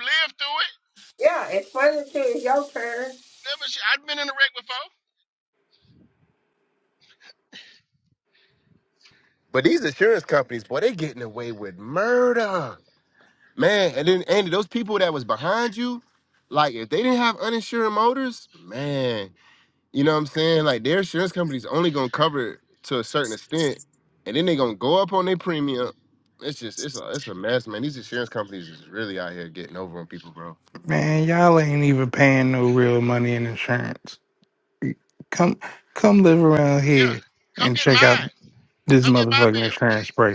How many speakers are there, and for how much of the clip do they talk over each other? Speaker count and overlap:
4, about 4%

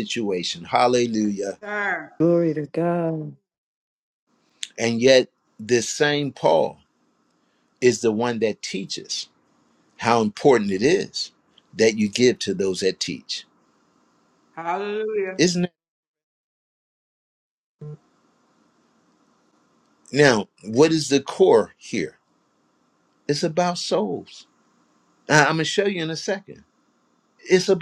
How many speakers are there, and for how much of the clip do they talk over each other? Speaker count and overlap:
3, about 2%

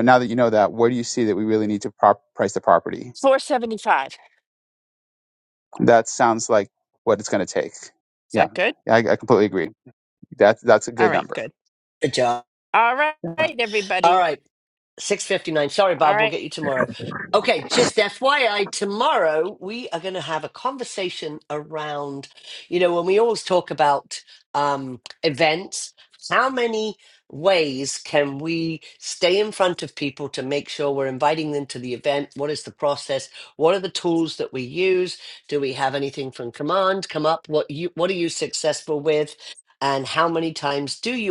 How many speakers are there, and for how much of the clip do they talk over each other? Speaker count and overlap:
3, about 3%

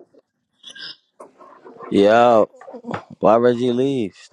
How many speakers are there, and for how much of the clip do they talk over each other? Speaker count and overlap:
1, no overlap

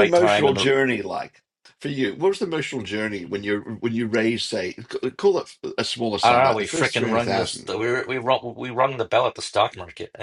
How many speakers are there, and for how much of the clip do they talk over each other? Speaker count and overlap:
2, about 21%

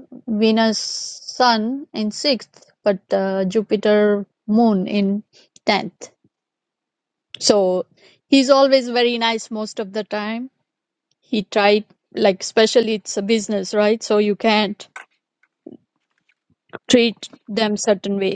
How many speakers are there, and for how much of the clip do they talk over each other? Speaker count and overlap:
1, no overlap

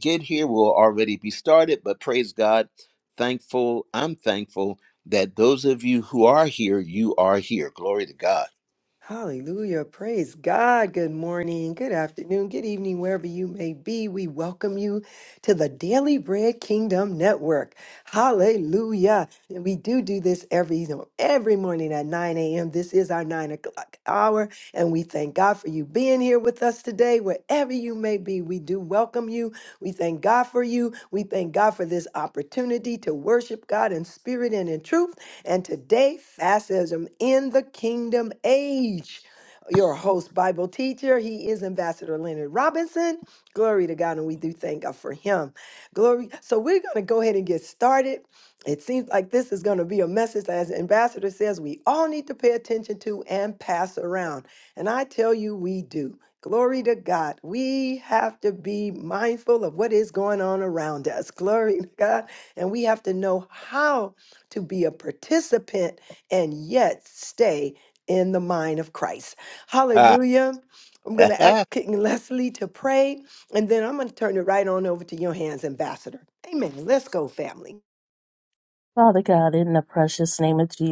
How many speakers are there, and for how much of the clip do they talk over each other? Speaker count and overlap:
3, under 1%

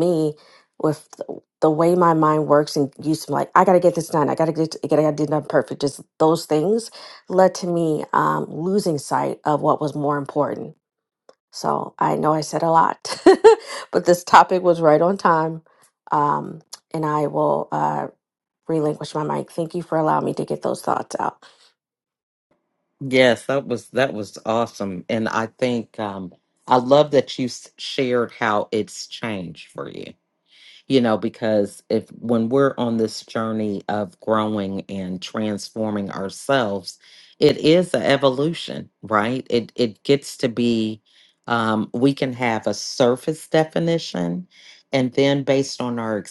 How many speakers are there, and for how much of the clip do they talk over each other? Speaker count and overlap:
2, no overlap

